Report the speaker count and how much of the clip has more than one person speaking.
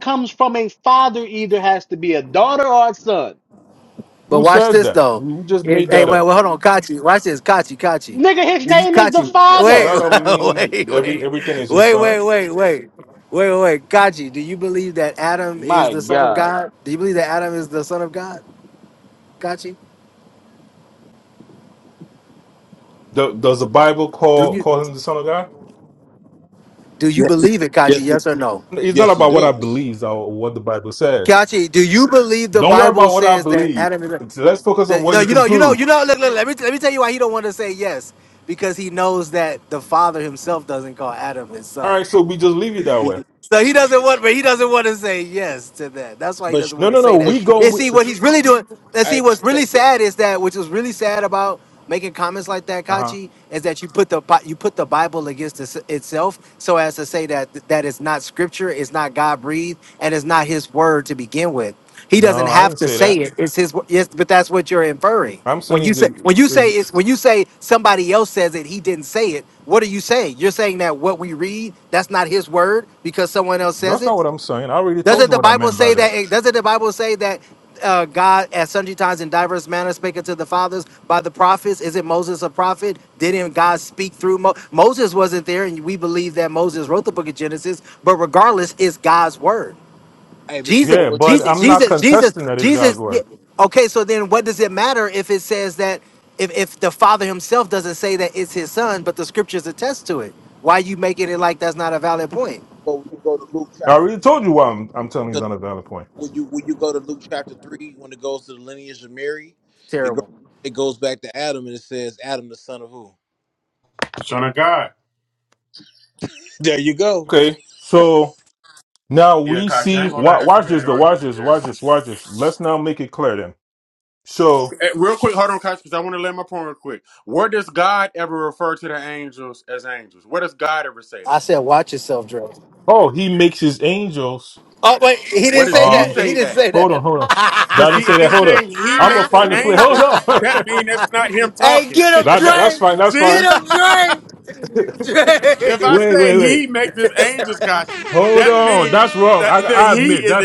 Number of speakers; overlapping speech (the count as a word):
five, about 18%